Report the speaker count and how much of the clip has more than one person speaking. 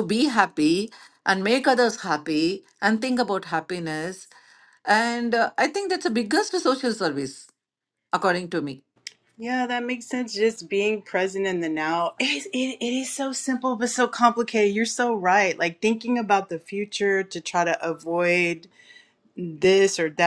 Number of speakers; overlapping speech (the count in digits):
2, no overlap